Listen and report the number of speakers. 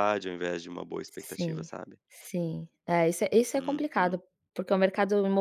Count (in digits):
2